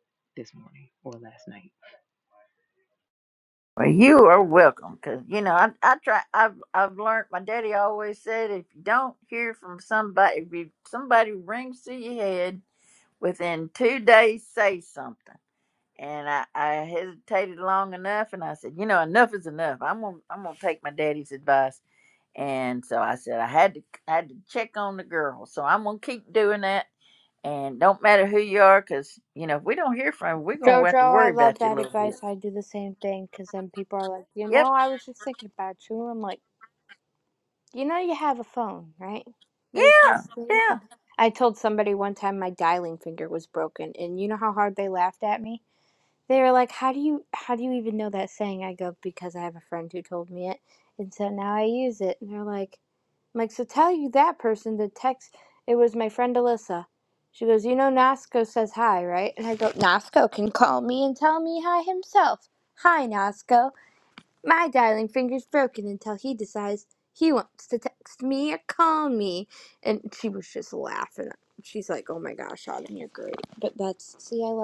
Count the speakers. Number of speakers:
three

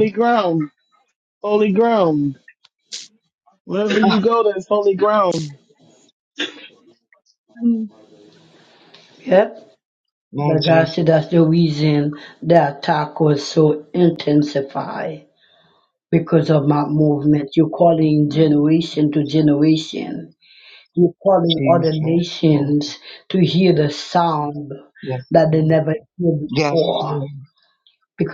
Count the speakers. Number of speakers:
three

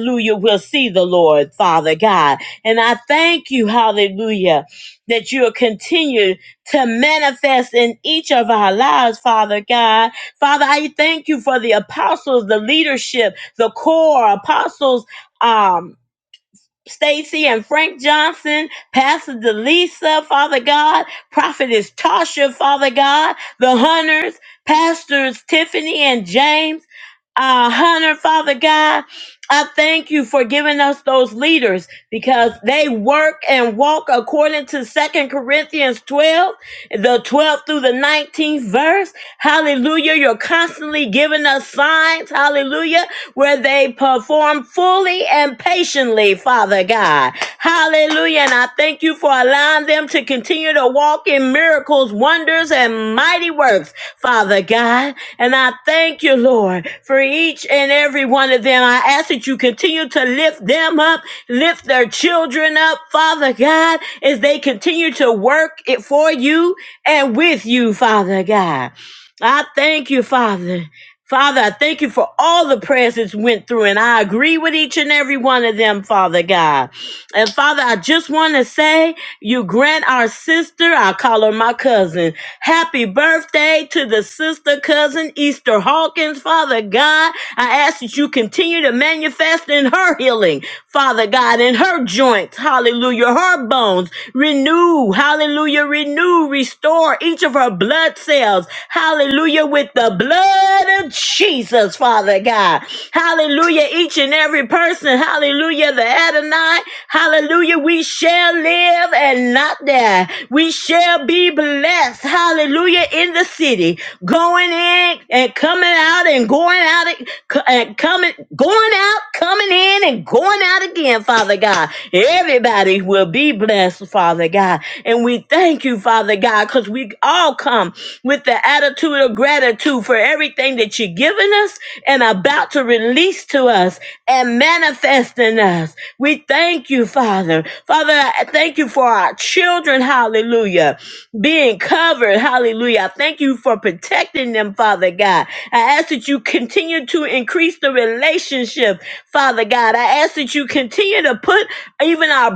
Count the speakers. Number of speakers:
one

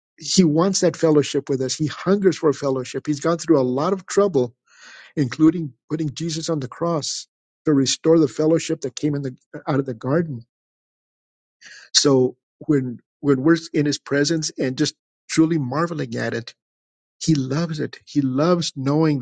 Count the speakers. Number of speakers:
one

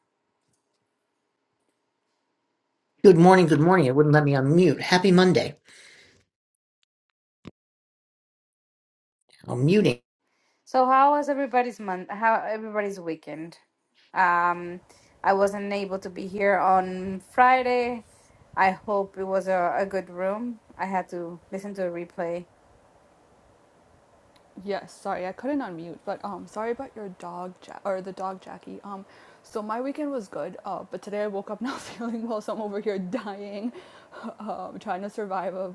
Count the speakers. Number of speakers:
three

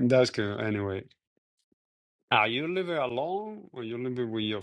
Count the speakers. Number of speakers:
one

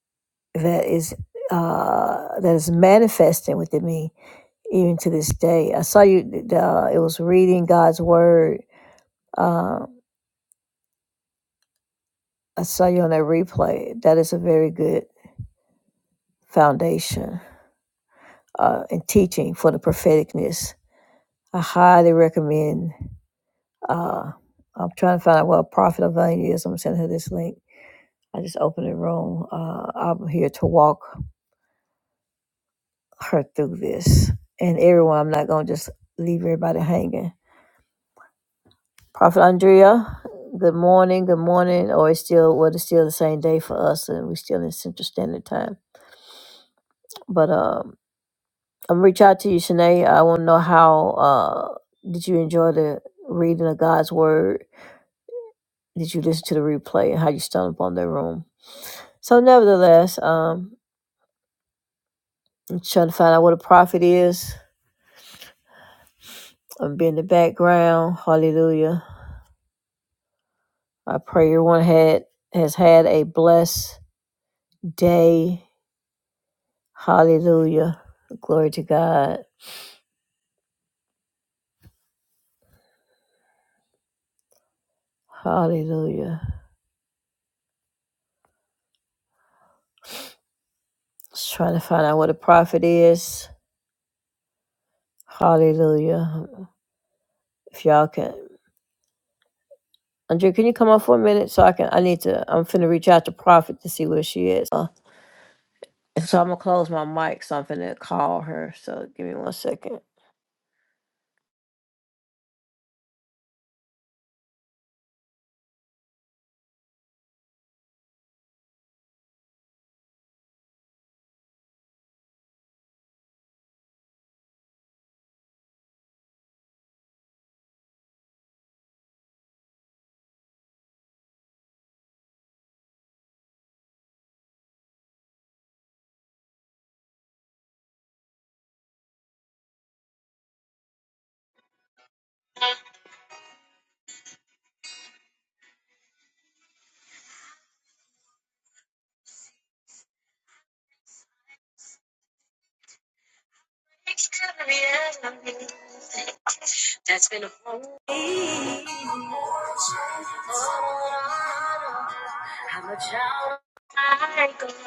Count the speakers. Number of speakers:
two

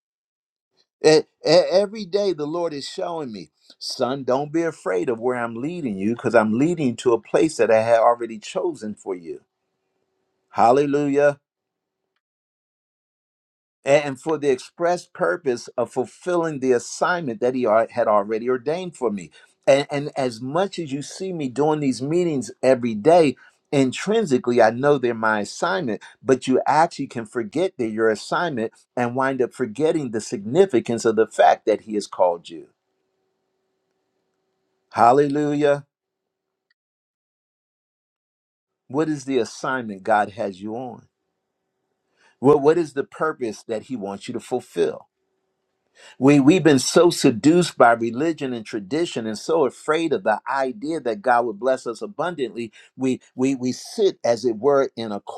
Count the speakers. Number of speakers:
one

